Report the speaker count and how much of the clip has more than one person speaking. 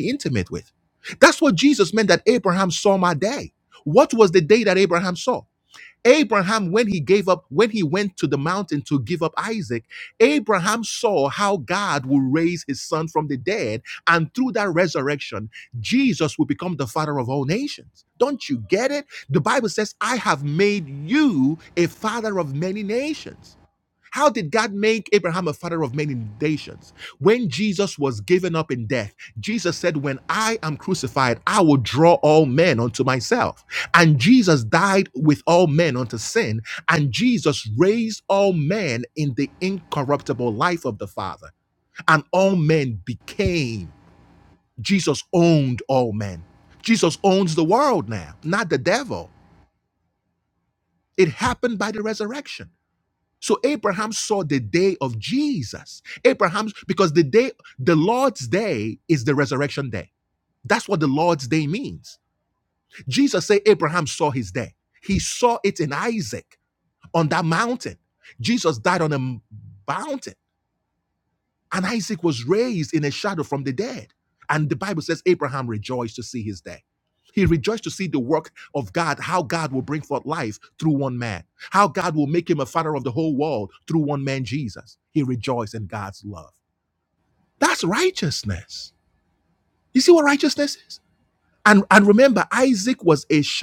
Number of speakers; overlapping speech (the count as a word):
one, no overlap